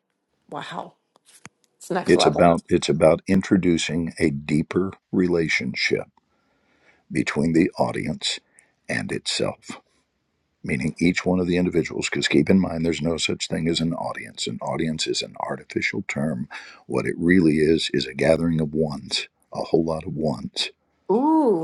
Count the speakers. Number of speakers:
two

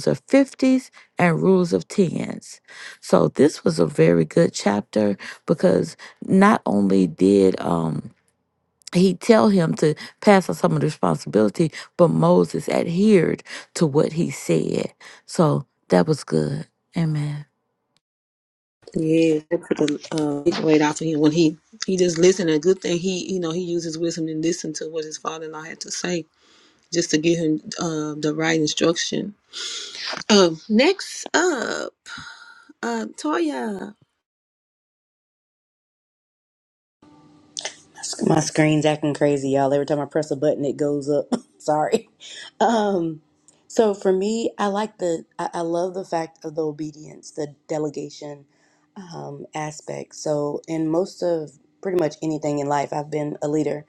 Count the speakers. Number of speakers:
three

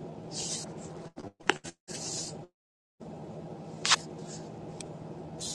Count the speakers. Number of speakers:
zero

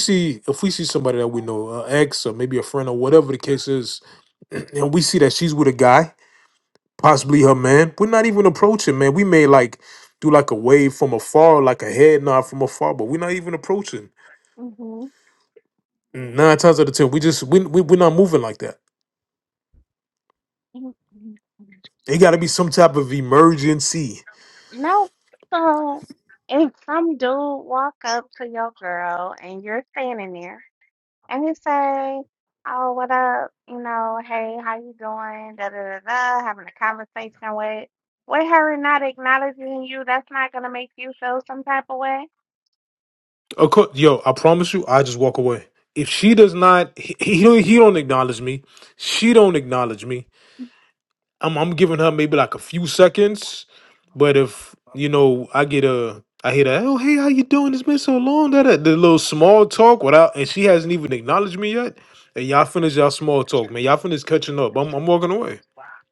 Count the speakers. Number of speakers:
two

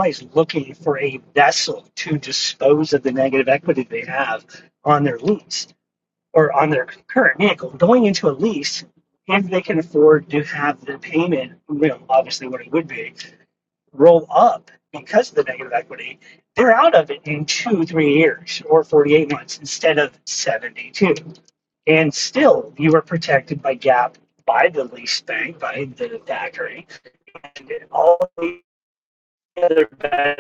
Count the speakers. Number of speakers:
one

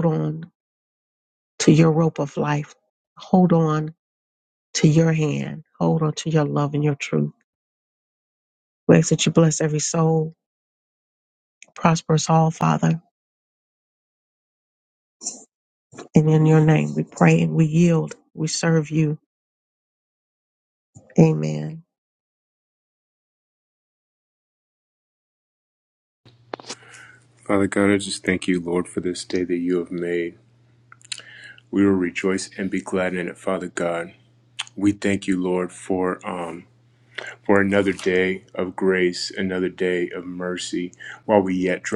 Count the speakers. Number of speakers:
two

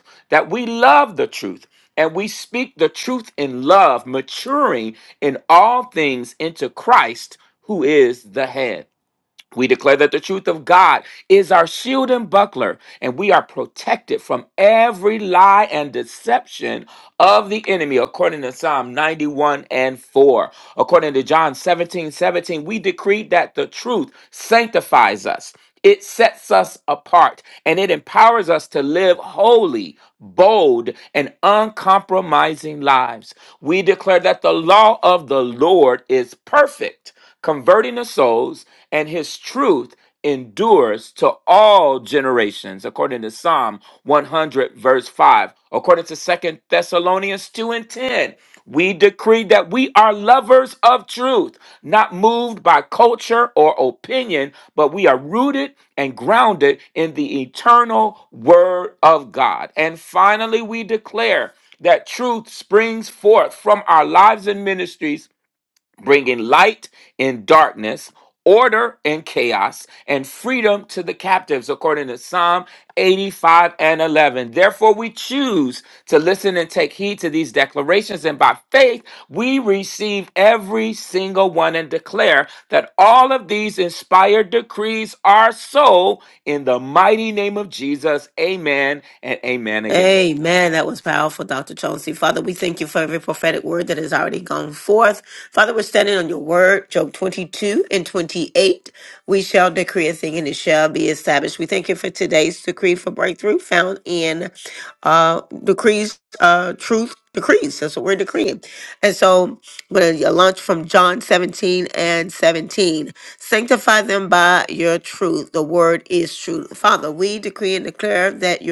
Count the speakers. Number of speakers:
two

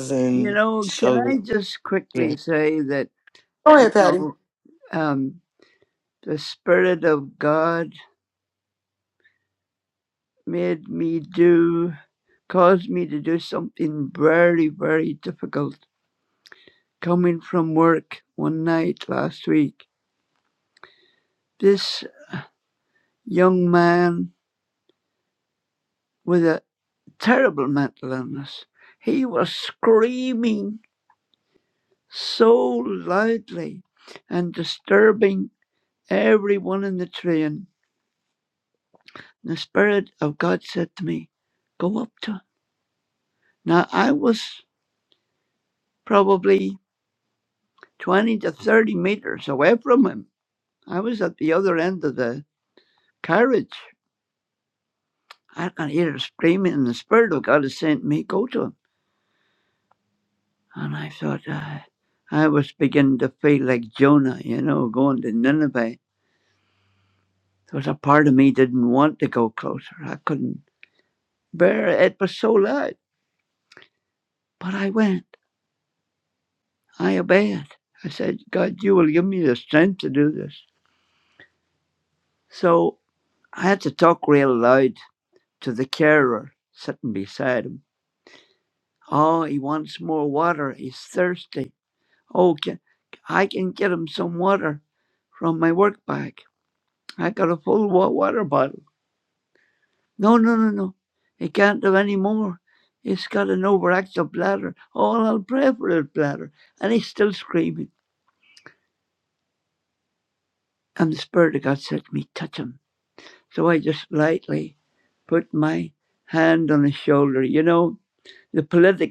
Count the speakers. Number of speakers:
two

